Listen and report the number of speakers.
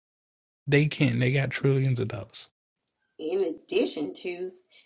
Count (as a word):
two